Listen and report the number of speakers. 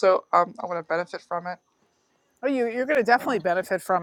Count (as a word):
two